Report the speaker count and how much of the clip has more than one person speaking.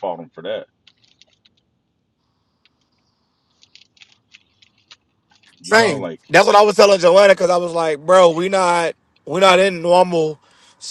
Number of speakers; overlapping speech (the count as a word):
two, about 4%